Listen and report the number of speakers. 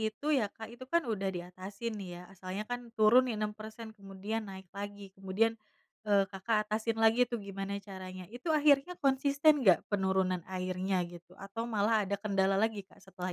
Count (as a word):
one